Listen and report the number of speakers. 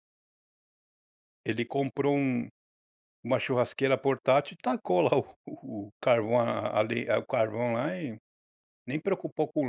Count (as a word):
one